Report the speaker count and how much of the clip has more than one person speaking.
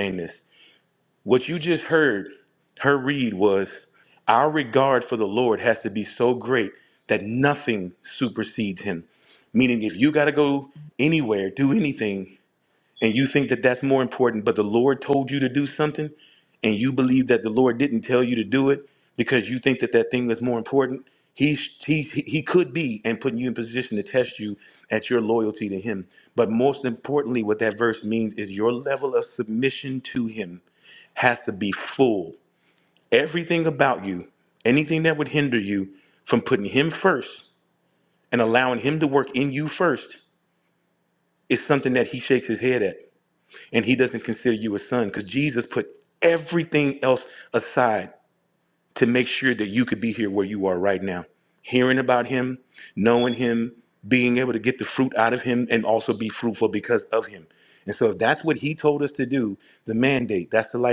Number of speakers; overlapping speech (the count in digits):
1, no overlap